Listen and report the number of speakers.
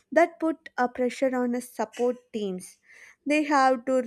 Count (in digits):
1